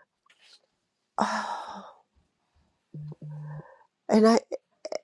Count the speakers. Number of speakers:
1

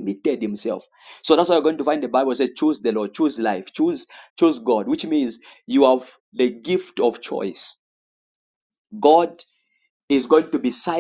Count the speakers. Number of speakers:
1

